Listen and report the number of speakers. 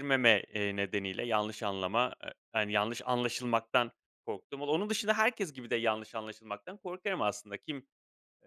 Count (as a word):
one